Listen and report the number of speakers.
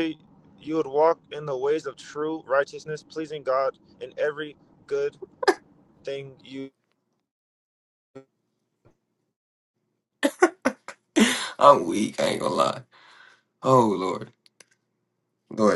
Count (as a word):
two